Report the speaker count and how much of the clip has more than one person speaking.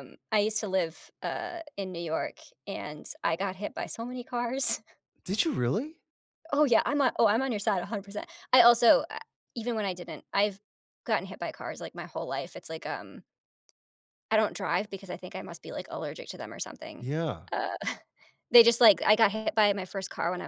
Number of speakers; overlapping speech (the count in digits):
2, under 1%